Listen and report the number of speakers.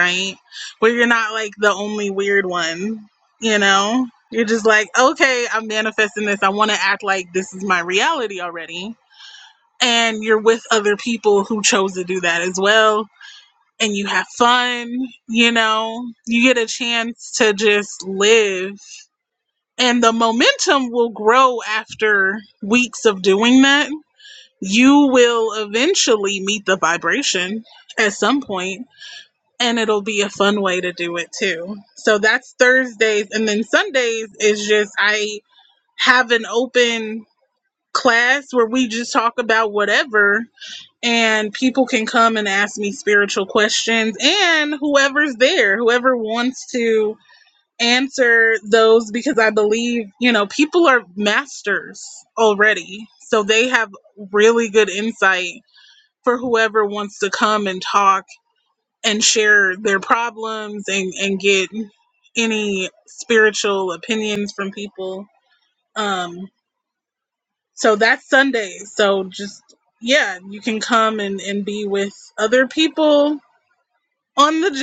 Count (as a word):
one